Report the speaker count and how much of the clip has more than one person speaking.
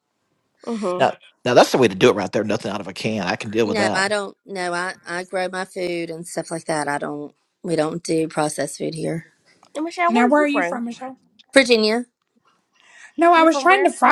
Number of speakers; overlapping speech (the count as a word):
four, about 12%